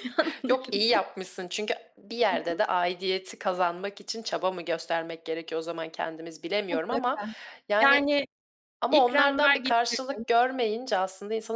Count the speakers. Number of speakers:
2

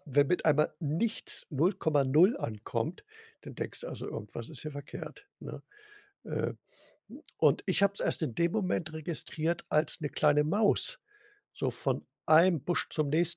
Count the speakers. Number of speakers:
1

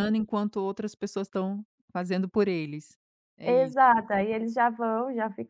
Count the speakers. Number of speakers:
2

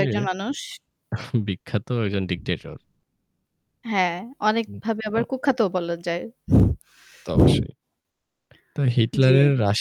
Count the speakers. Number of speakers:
2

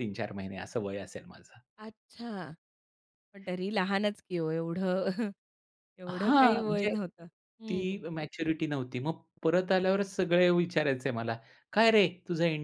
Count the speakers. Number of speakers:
2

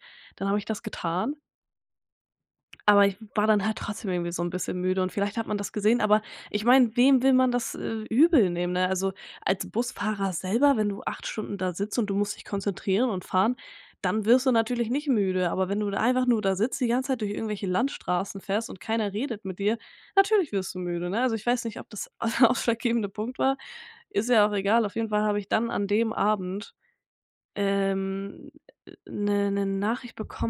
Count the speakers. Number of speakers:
1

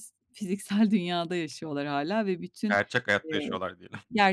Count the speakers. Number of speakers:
2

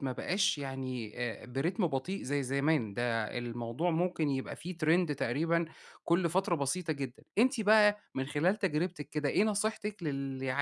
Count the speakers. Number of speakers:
1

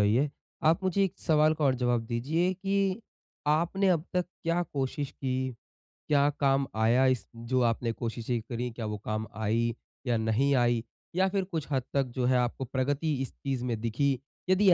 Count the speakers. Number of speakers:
1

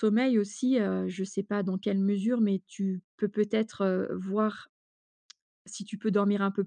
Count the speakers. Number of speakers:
1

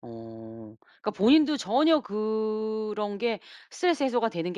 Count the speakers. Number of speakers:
1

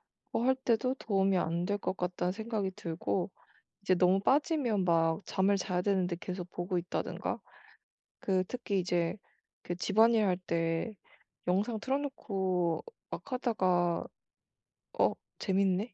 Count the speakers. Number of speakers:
1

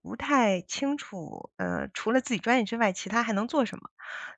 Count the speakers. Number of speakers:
1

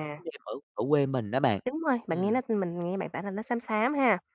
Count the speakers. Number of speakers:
2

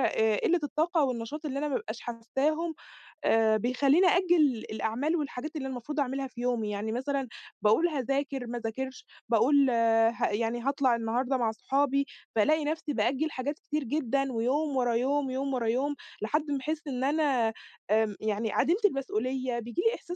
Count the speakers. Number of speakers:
1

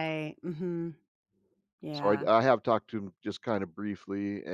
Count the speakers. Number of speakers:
2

